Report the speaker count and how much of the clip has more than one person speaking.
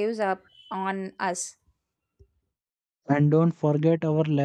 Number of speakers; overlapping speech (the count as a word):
two, no overlap